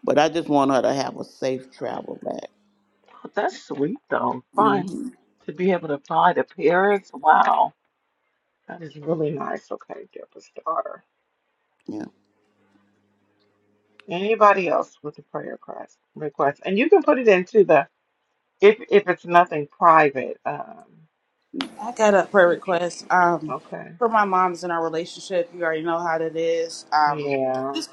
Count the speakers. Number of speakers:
3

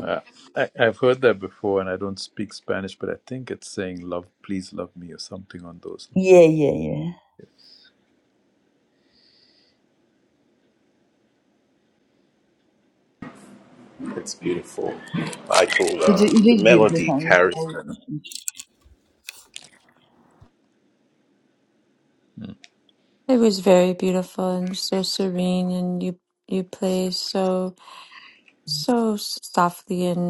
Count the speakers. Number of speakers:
4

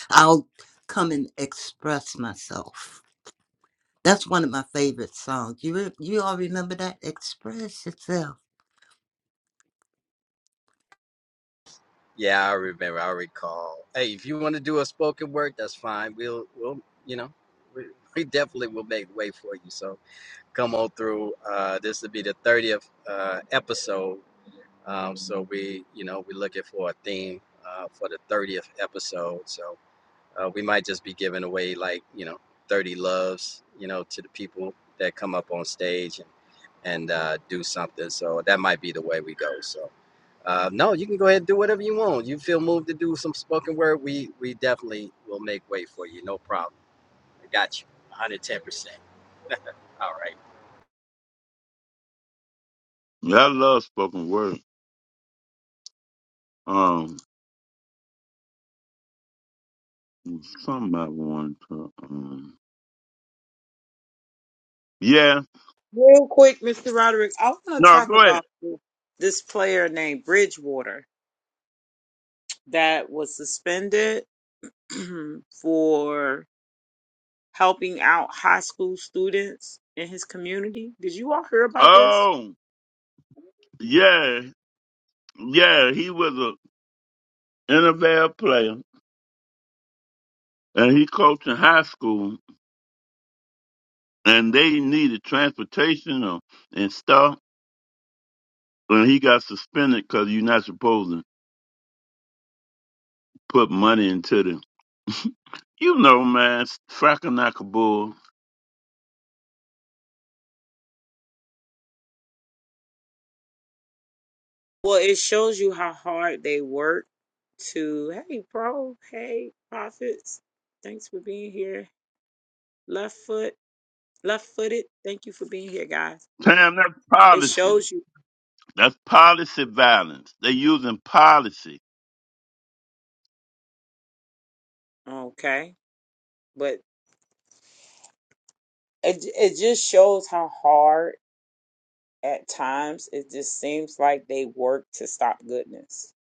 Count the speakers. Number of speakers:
4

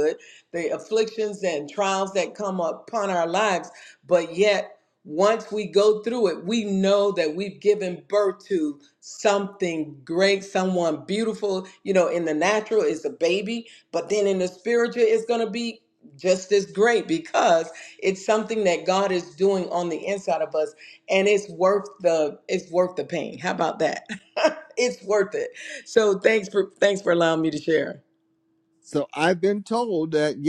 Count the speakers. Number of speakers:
2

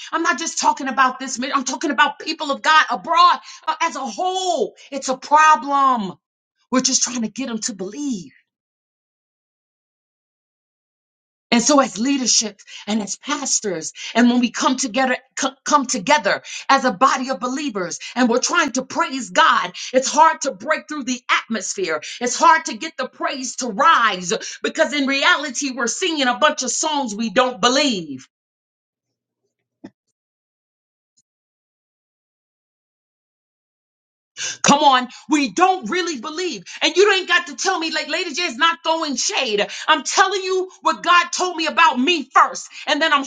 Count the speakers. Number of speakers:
1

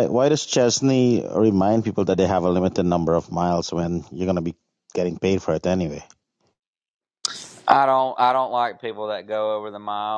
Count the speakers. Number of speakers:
2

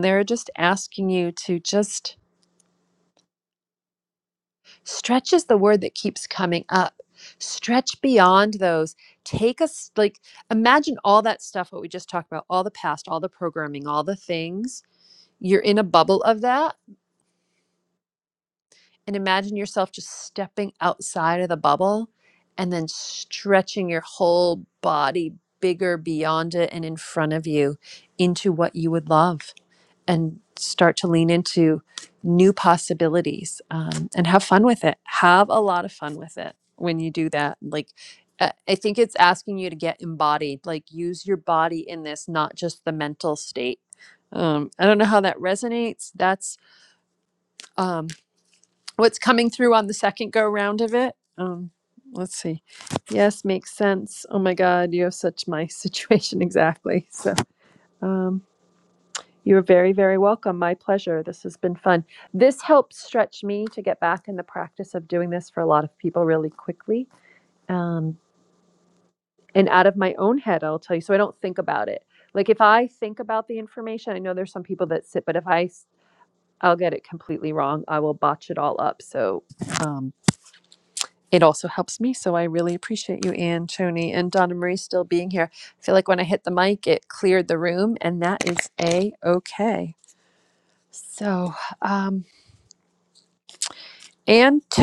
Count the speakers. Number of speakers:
1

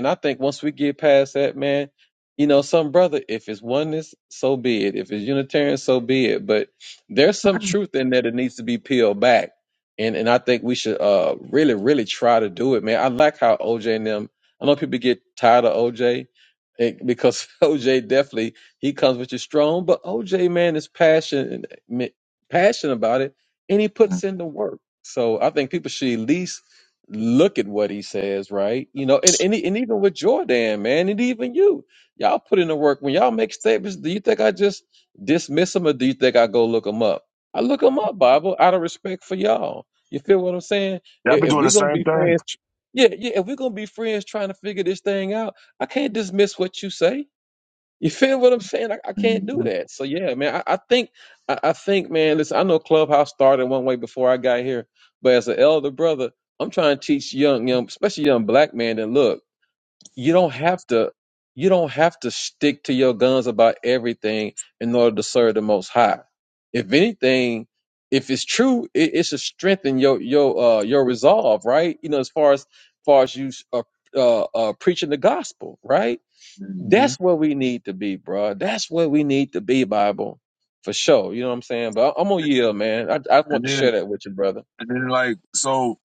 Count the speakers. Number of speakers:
2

